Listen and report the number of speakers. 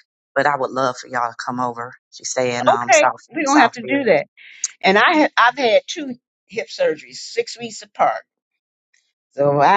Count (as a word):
two